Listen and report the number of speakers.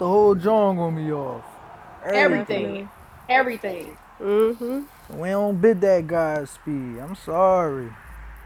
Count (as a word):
three